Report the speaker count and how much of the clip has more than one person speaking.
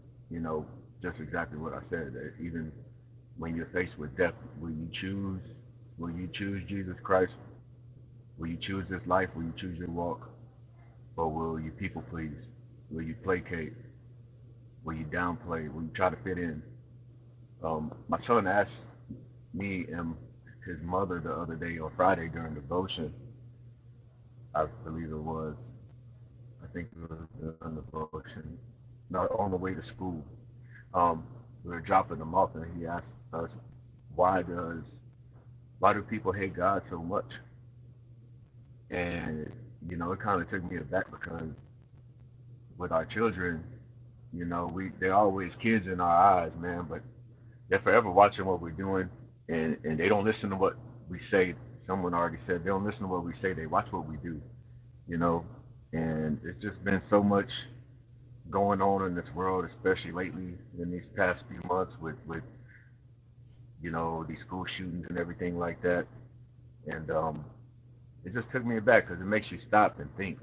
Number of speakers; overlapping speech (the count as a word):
one, no overlap